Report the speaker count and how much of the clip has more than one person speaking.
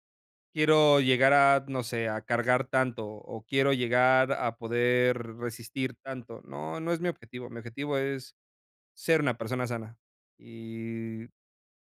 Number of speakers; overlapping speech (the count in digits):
1, no overlap